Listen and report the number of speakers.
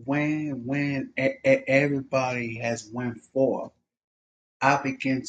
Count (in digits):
1